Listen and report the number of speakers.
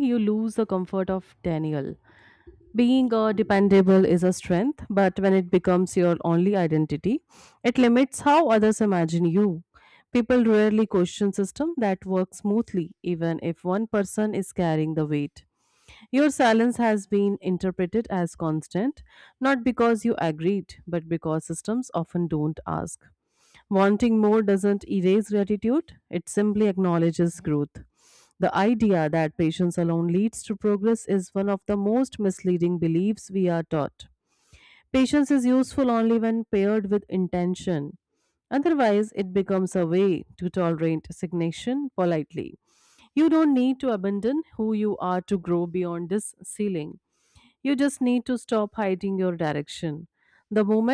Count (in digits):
1